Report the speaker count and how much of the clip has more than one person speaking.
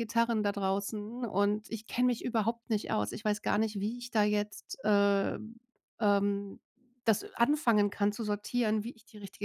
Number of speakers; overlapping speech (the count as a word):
one, no overlap